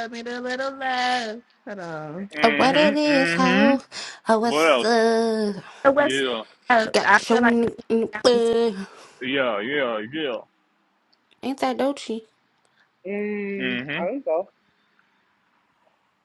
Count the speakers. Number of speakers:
four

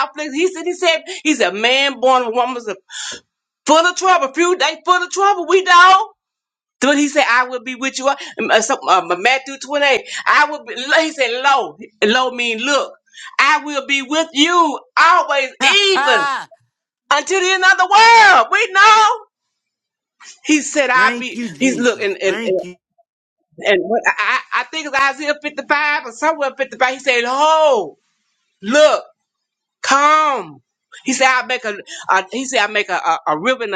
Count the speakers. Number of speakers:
two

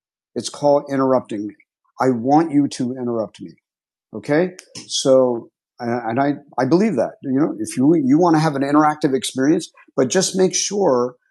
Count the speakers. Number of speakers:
one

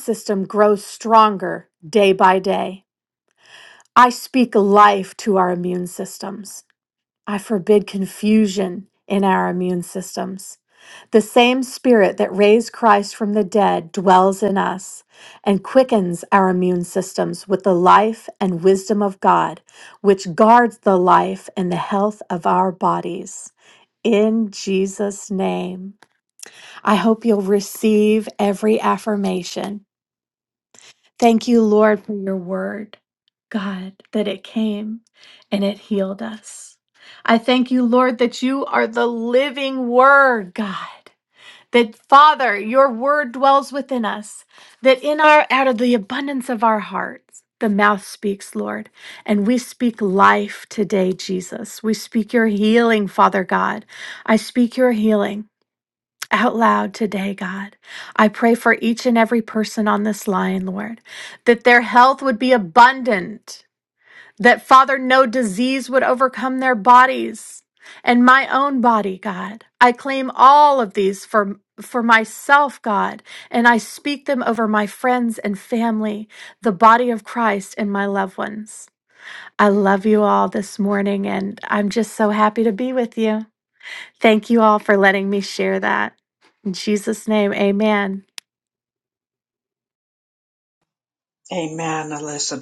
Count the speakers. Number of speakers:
two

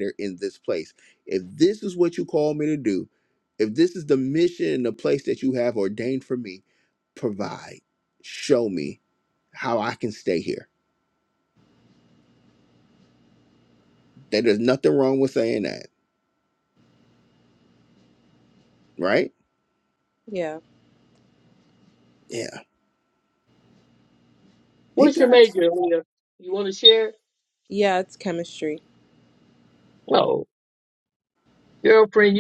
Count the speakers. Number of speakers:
three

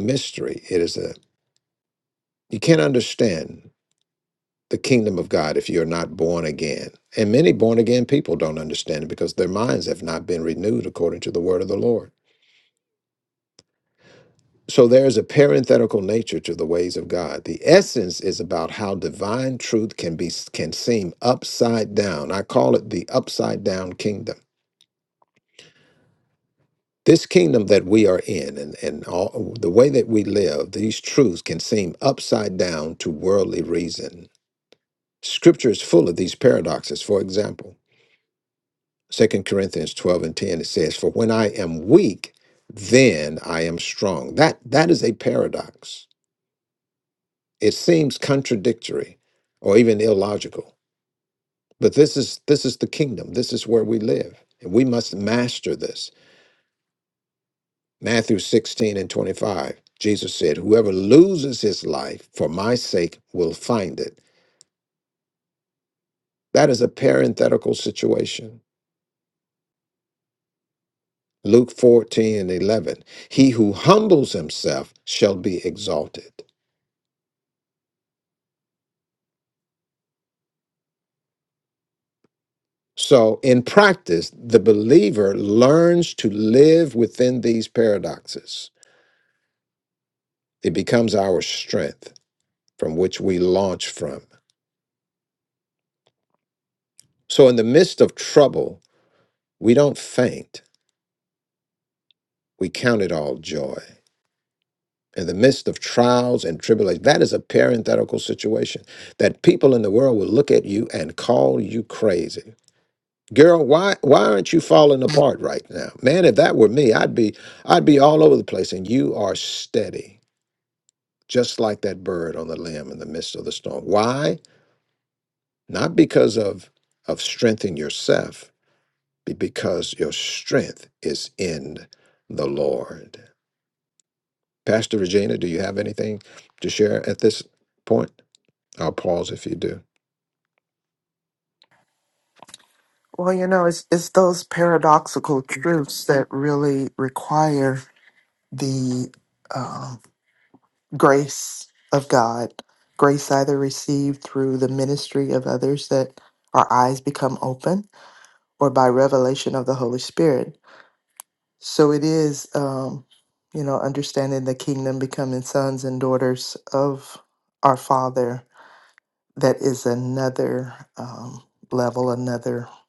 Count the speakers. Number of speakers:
two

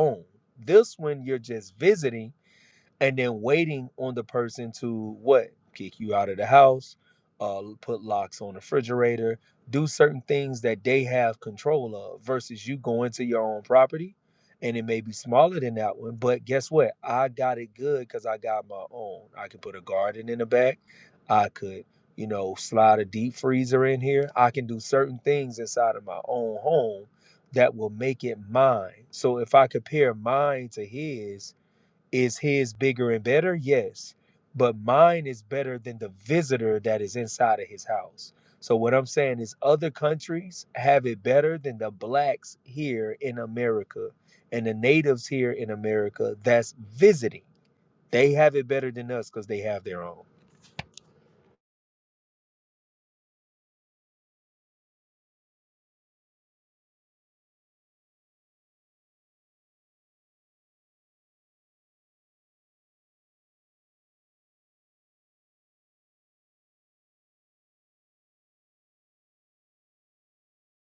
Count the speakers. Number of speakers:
one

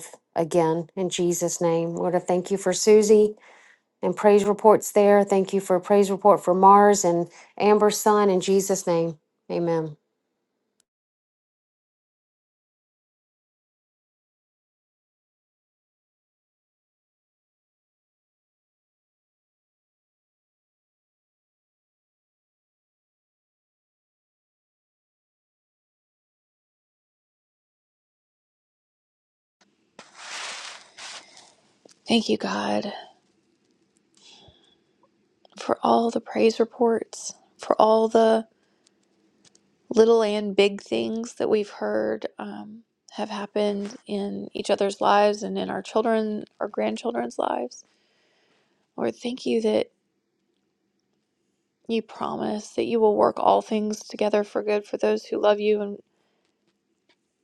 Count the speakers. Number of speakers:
two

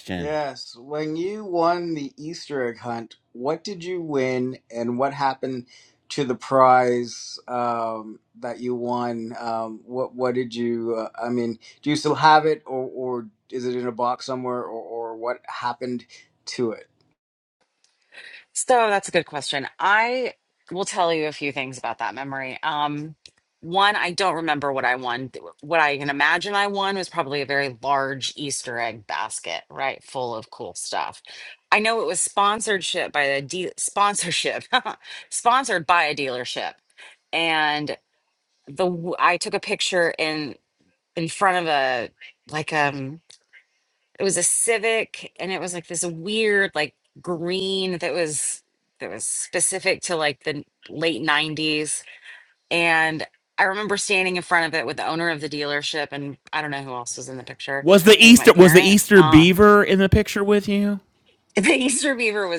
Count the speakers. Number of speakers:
three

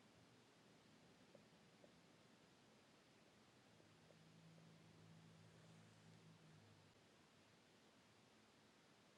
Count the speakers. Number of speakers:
zero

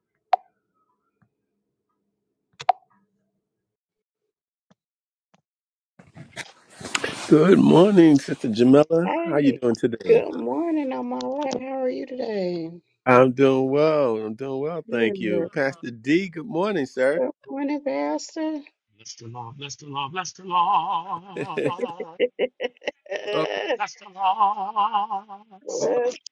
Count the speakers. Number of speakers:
three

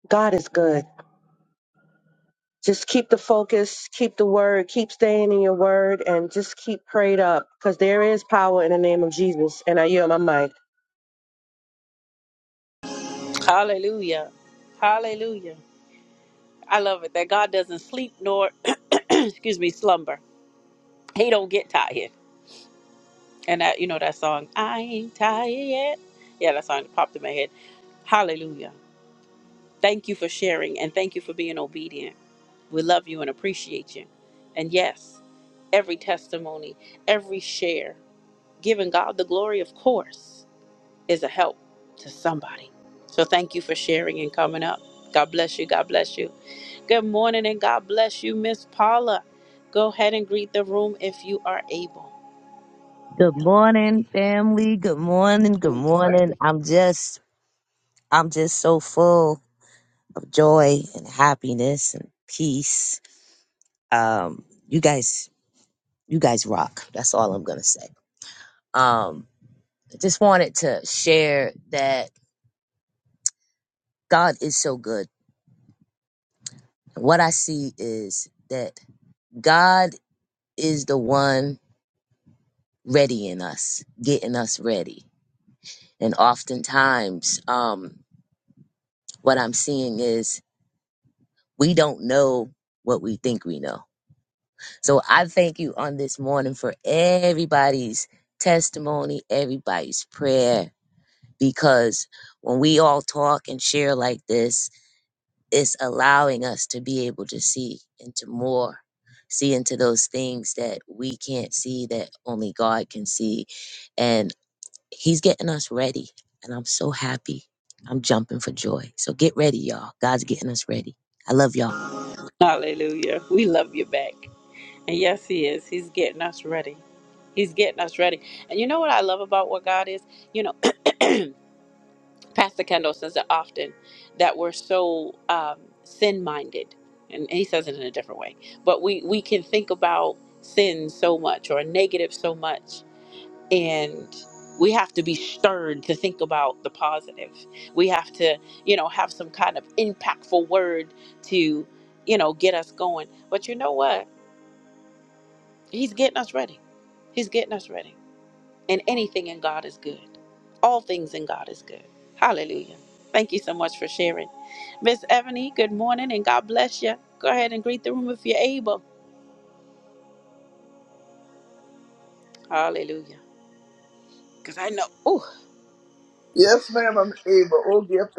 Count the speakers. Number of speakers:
four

